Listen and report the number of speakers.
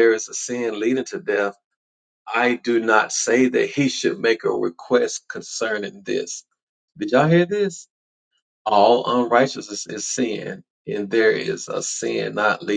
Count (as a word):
one